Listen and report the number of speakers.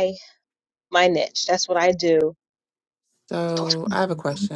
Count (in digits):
2